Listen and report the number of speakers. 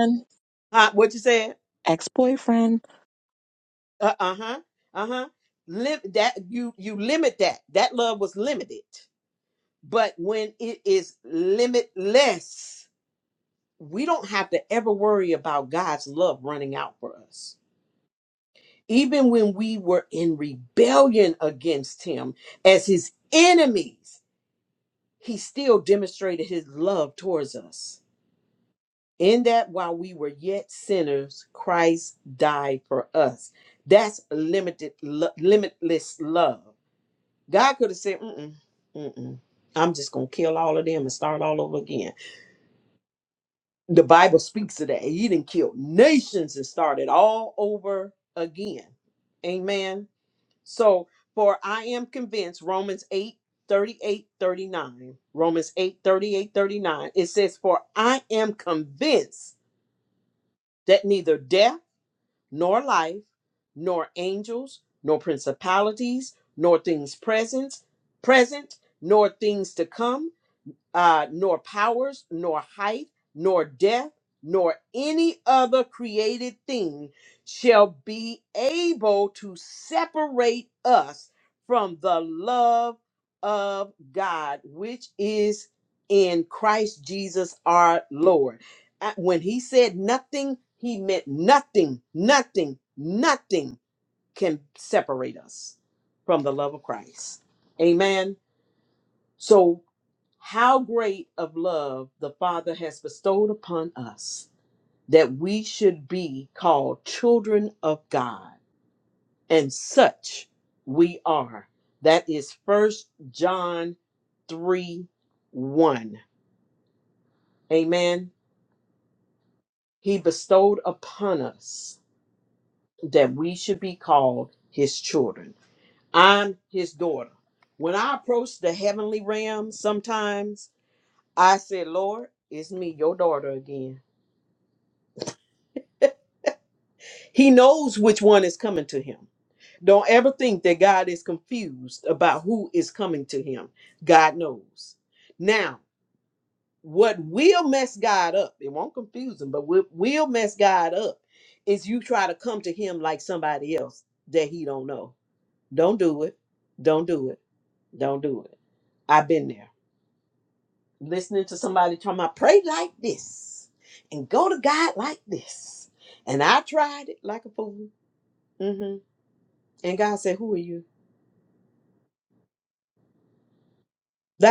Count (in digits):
2